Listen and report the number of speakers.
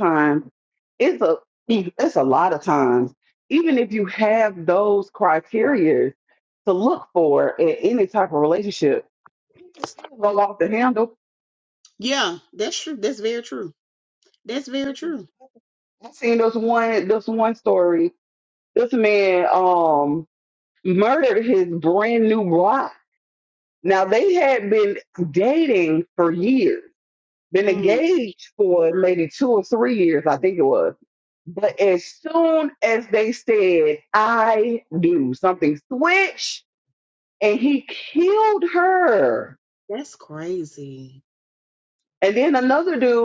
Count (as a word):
two